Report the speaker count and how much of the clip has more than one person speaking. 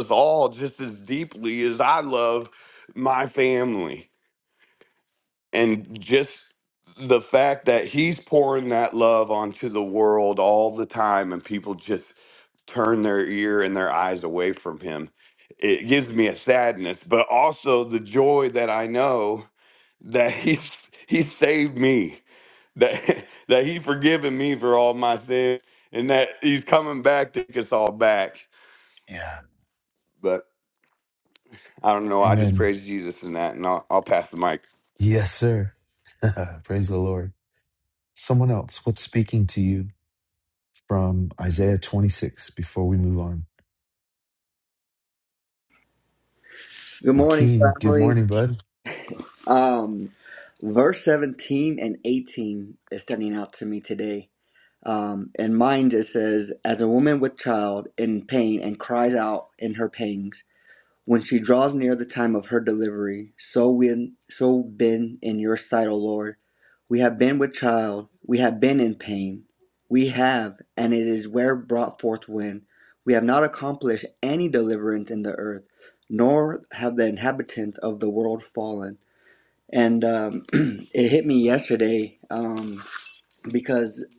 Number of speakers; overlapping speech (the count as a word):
three, about 2%